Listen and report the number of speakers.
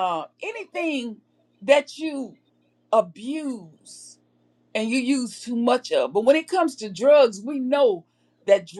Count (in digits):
1